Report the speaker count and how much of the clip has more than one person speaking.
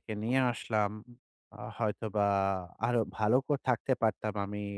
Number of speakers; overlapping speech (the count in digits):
1, no overlap